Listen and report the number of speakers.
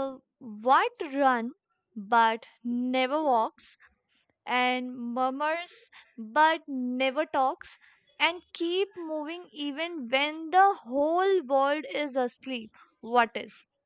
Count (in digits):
1